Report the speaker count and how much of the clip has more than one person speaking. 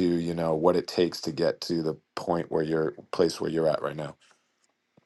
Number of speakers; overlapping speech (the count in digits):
1, no overlap